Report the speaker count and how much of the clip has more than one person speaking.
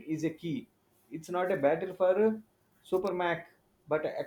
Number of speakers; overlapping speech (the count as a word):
one, no overlap